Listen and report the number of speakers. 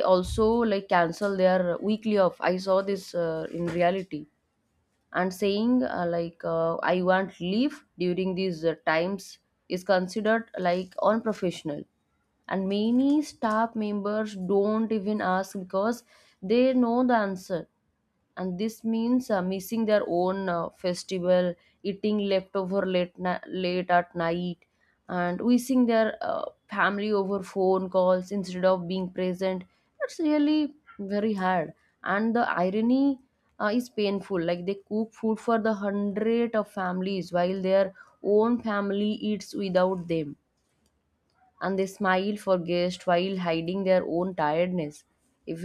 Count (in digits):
1